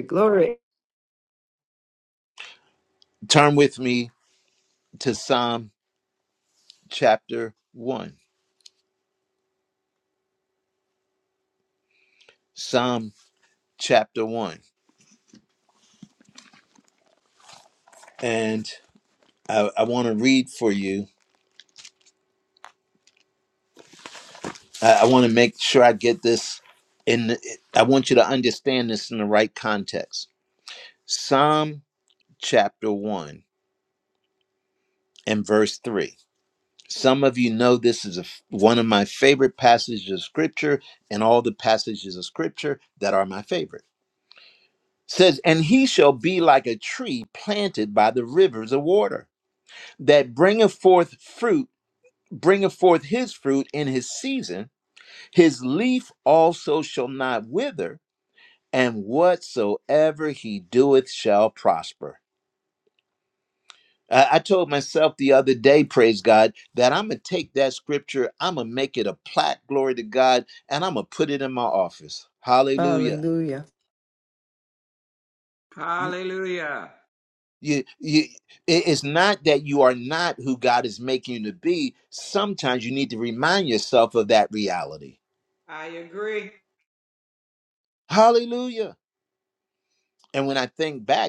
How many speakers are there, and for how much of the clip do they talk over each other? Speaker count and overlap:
3, under 1%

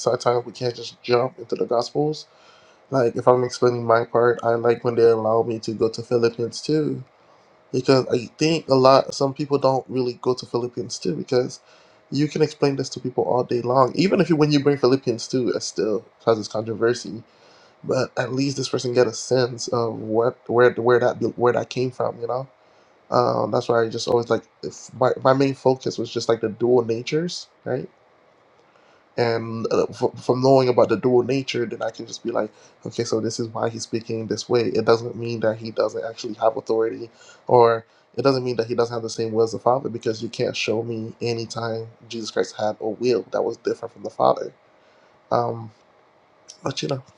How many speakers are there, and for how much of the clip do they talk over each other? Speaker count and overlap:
1, no overlap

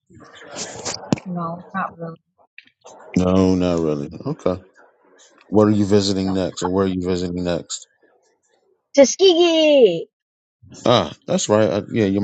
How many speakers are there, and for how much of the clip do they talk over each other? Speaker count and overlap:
2, about 1%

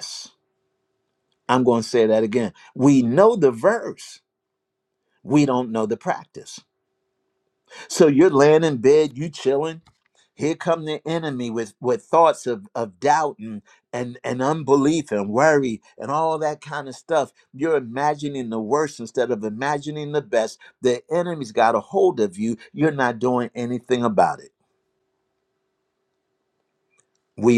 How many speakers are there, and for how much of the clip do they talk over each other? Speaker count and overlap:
1, no overlap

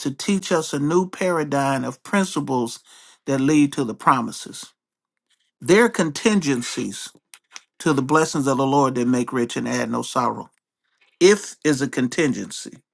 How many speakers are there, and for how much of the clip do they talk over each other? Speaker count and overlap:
1, no overlap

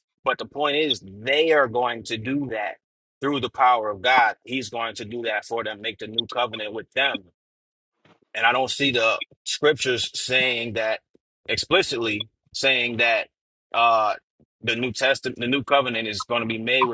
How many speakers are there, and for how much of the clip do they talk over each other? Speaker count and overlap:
1, no overlap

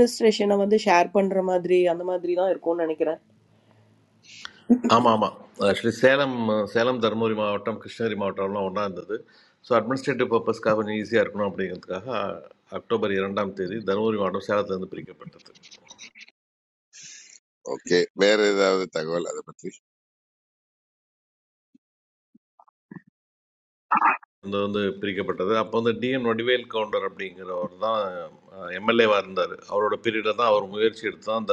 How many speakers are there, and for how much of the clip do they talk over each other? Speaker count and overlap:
3, no overlap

